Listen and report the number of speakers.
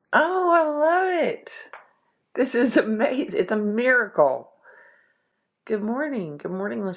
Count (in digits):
1